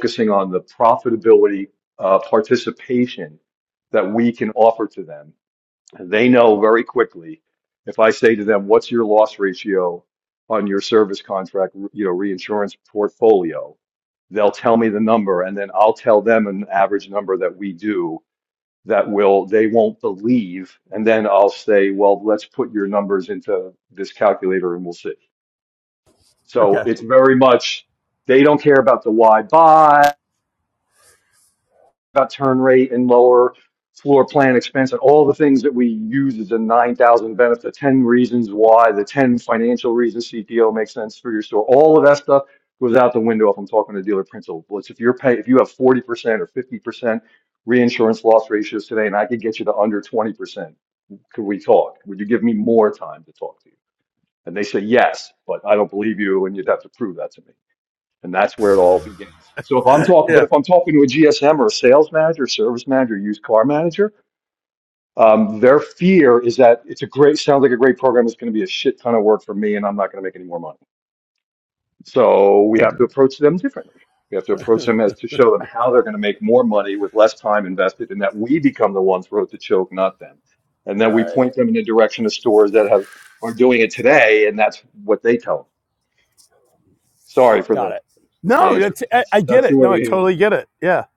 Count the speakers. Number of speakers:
2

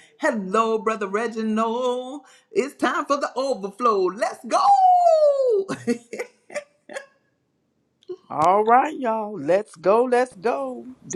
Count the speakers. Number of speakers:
2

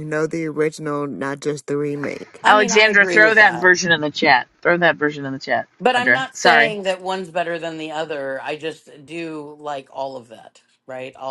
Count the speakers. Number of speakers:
3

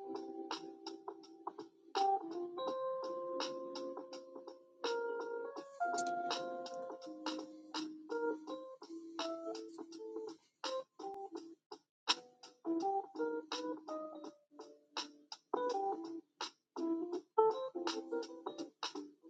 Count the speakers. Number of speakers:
0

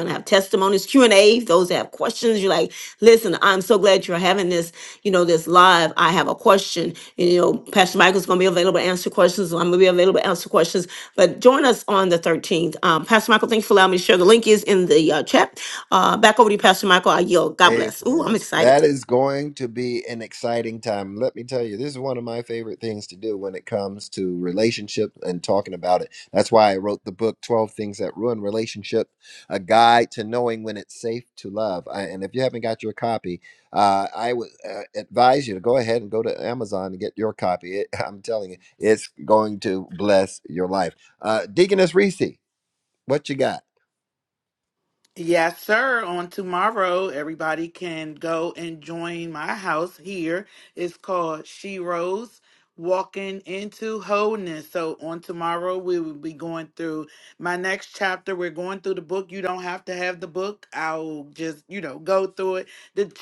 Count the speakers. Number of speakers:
3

